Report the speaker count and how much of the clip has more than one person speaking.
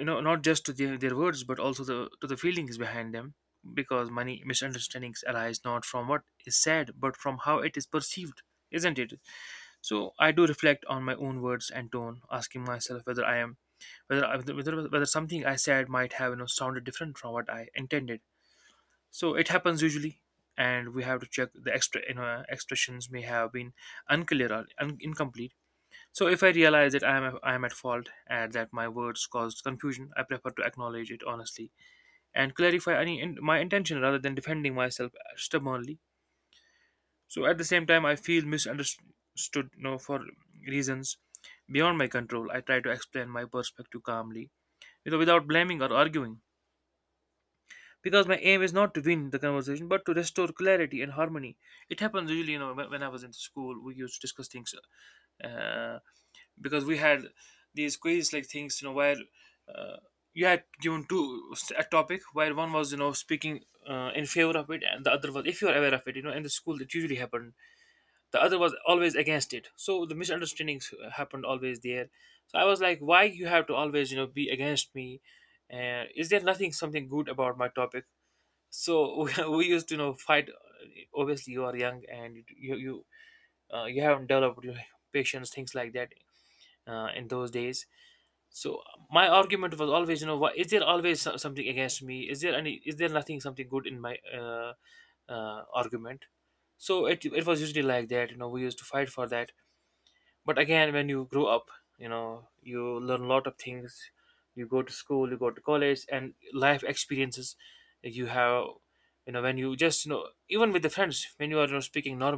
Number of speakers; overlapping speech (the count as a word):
one, no overlap